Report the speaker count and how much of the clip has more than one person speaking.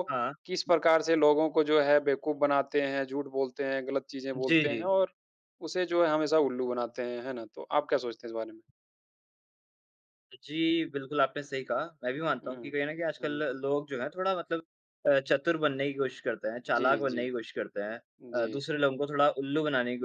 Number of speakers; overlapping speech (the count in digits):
2, about 9%